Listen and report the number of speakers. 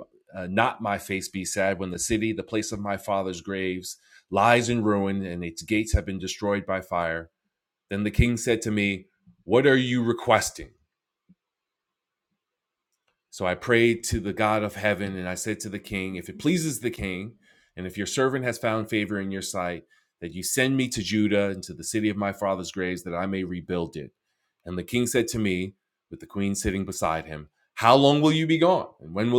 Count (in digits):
1